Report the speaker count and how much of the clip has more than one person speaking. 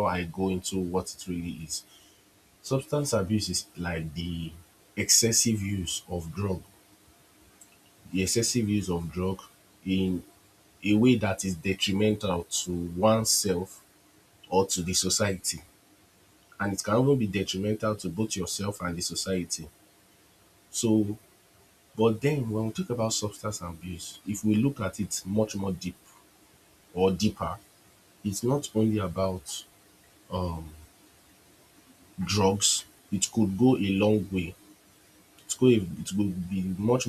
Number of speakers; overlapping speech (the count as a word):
one, no overlap